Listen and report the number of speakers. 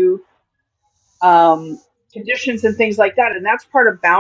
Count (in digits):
1